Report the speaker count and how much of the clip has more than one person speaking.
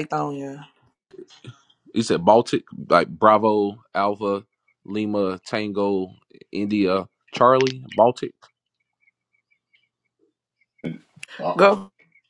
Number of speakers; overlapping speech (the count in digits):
2, no overlap